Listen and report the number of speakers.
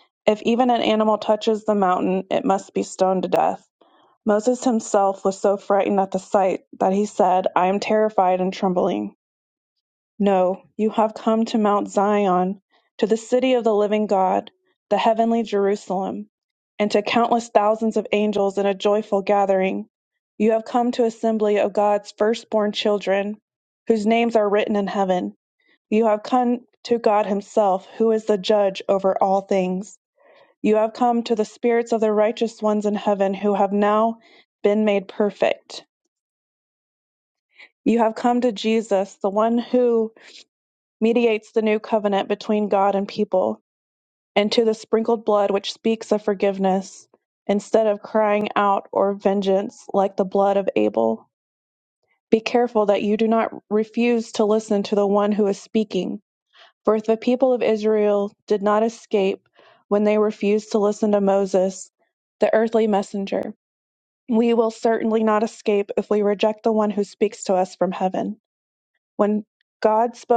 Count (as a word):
one